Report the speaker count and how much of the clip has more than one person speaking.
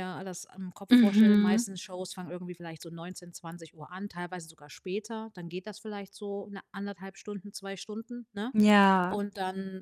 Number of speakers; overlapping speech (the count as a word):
two, about 9%